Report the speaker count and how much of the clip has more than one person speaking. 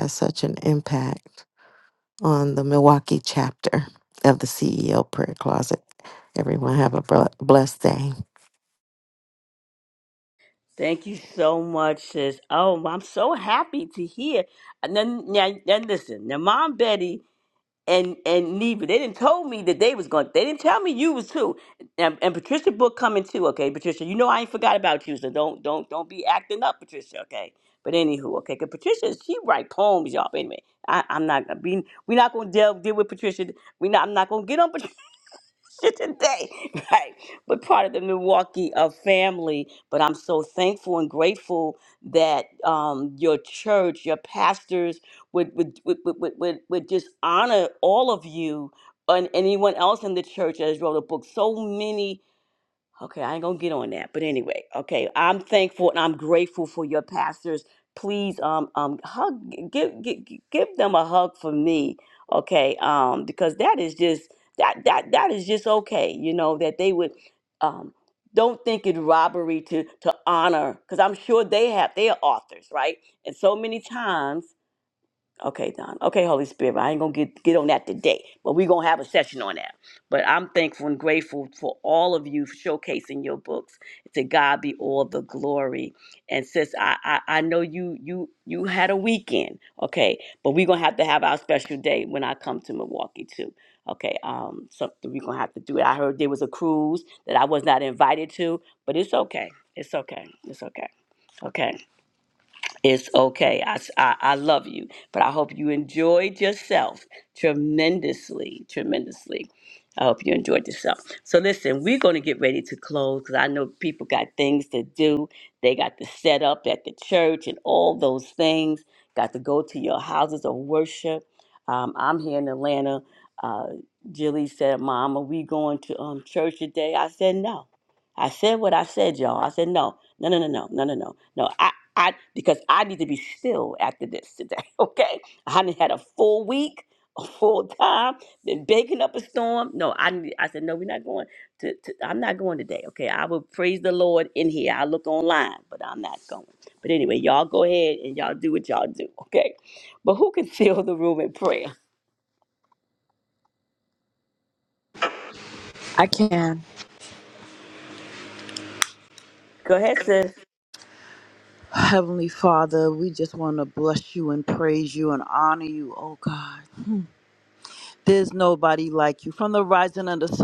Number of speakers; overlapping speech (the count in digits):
3, no overlap